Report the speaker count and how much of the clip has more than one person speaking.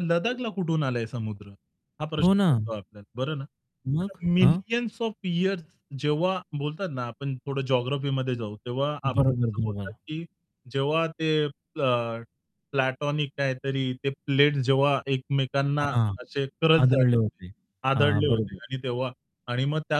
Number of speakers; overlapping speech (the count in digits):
2, about 17%